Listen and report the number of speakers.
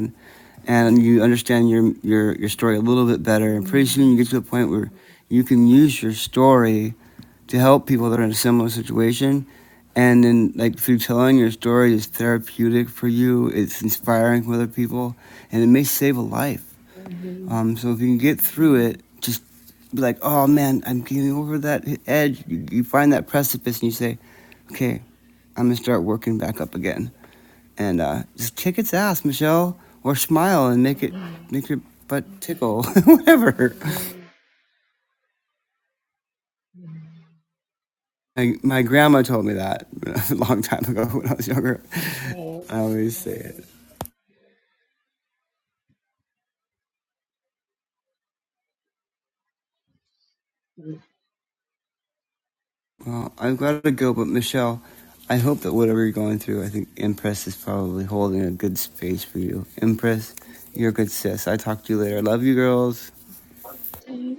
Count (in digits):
2